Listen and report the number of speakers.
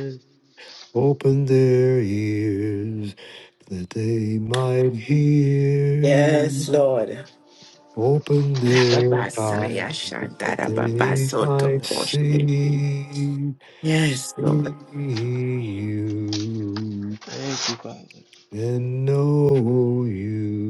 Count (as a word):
three